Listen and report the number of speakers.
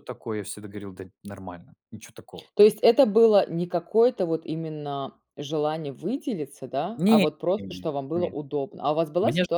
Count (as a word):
two